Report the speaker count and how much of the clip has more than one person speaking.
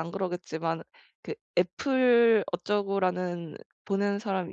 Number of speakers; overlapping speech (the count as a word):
one, no overlap